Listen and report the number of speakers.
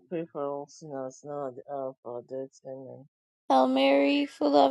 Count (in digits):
2